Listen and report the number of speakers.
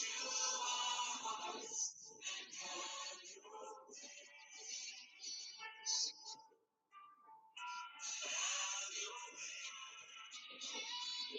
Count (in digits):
0